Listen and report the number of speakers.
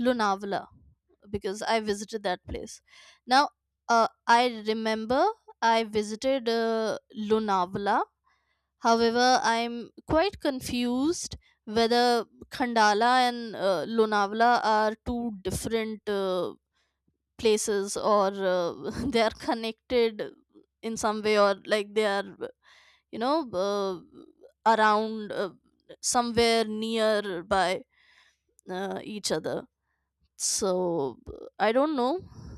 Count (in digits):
1